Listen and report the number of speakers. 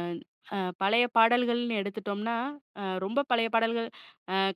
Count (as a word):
one